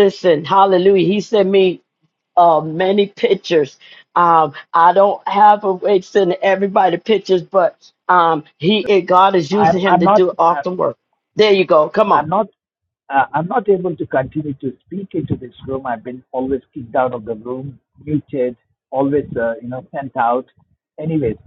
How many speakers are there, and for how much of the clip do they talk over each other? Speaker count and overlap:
2, about 6%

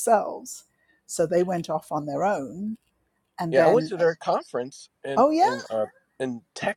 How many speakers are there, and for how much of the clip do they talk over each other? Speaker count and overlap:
2, about 13%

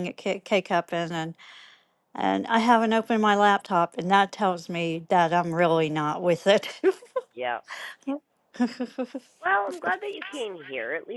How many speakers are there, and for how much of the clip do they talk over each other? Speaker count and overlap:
2, no overlap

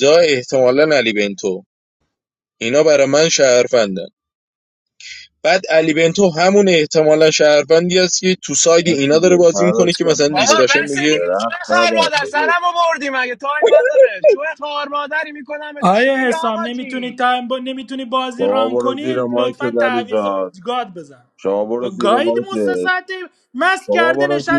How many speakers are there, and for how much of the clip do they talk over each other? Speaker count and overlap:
4, about 34%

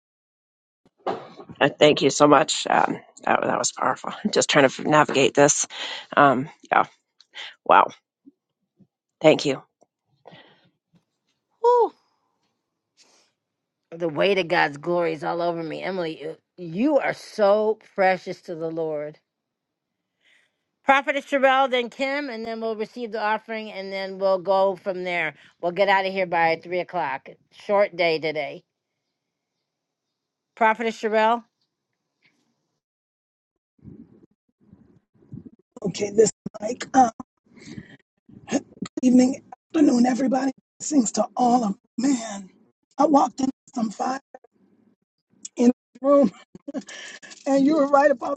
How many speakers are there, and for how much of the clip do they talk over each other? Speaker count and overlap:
3, no overlap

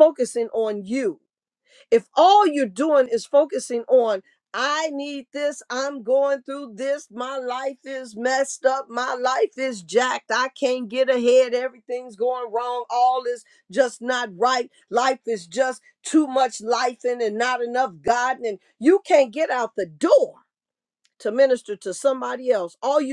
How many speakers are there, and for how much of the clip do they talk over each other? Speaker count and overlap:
1, no overlap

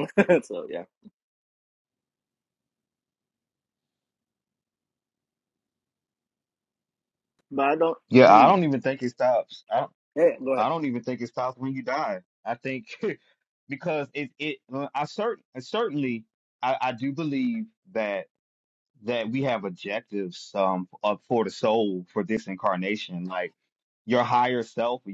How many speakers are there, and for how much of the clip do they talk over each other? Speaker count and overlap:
2, about 2%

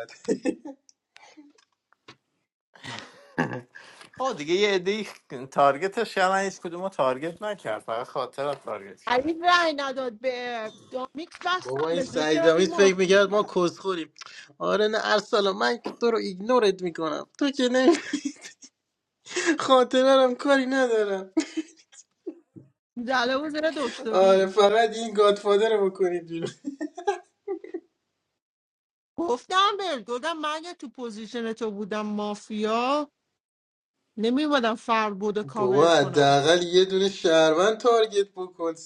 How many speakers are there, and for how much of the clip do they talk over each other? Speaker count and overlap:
3, about 6%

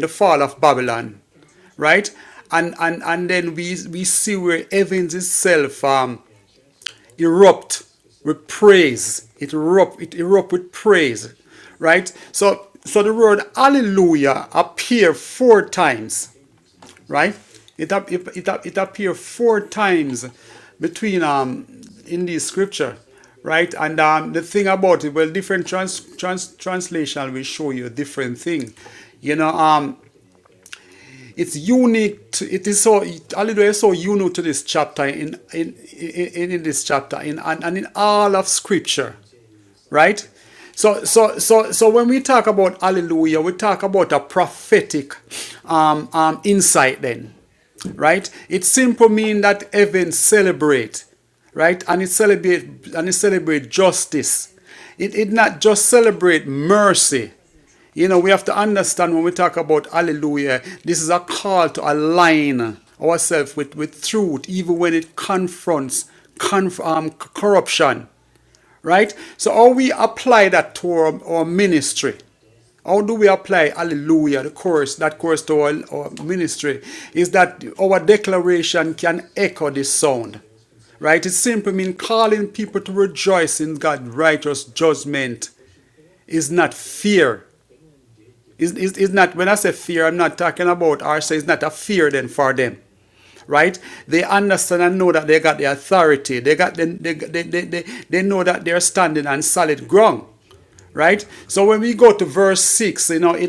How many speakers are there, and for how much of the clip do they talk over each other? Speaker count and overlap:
1, no overlap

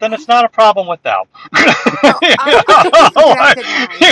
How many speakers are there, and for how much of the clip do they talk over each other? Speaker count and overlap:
2, about 38%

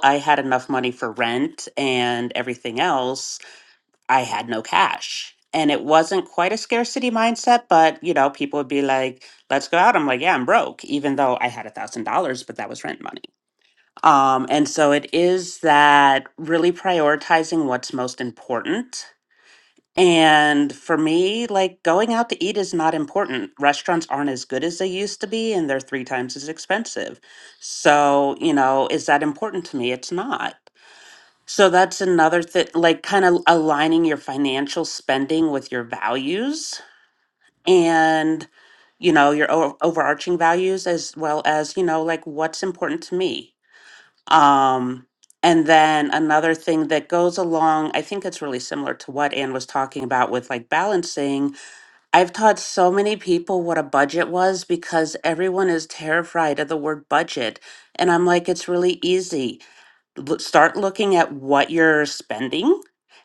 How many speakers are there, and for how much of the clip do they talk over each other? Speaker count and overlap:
1, no overlap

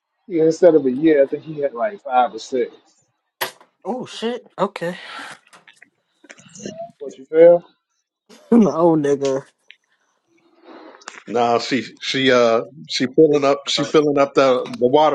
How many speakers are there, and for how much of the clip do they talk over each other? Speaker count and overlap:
3, no overlap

